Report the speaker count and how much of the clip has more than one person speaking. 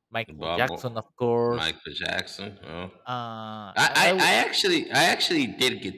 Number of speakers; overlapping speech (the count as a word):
two, about 24%